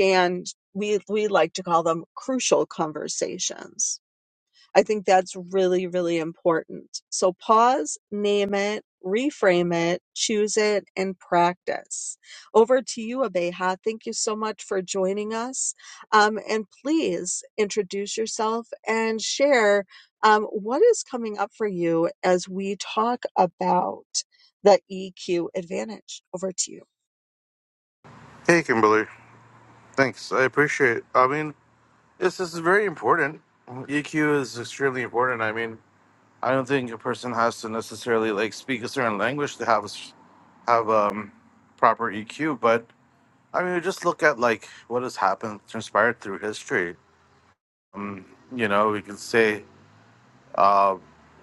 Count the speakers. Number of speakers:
2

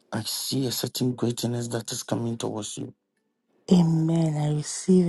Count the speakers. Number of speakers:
2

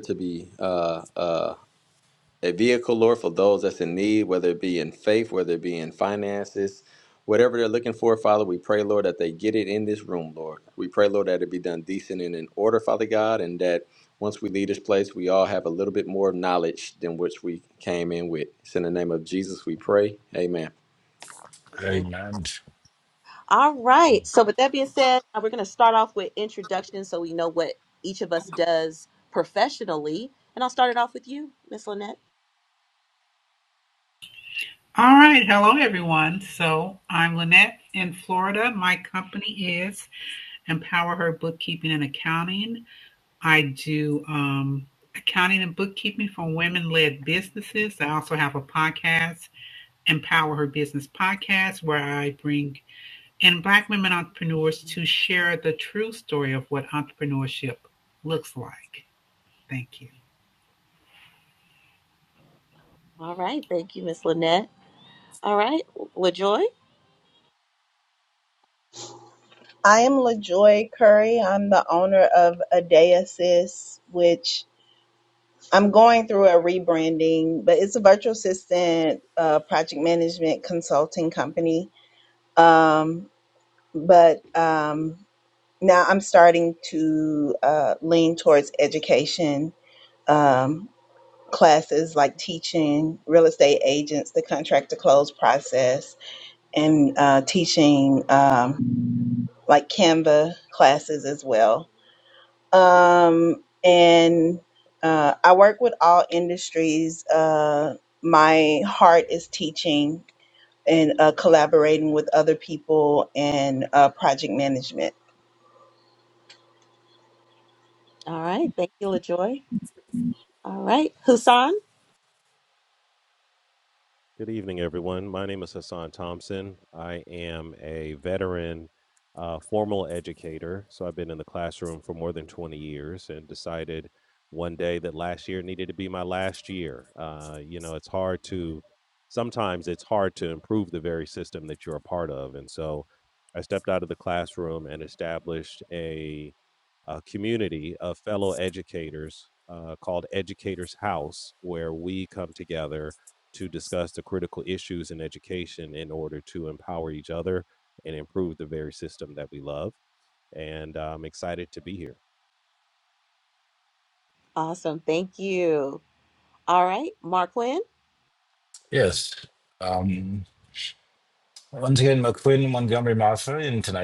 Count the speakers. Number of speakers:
6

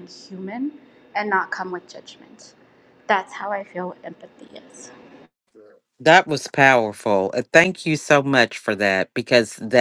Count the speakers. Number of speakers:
2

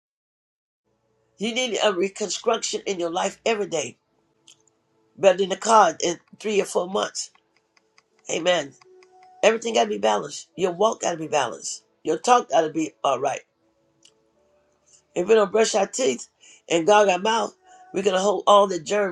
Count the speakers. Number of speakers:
1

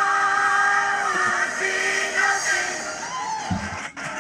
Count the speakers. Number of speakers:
0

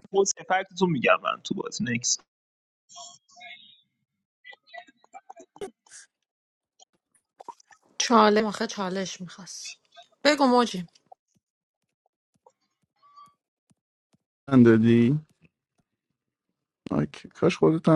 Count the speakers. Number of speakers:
3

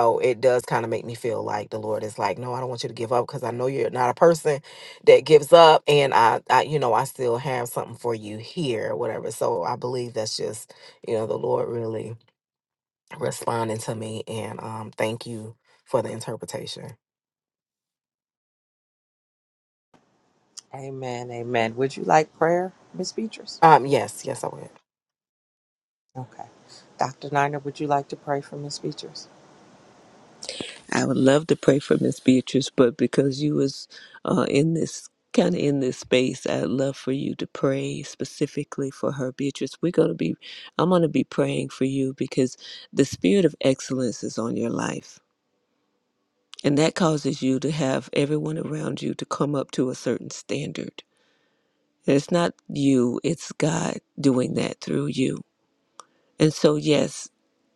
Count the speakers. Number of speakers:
3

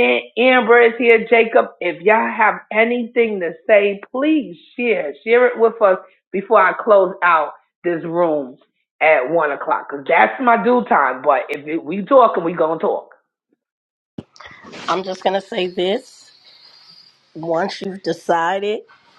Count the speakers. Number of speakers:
2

